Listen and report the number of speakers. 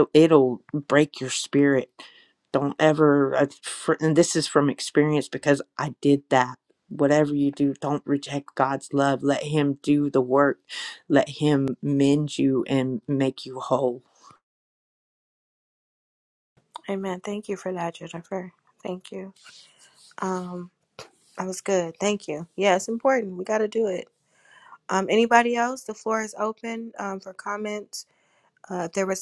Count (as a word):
two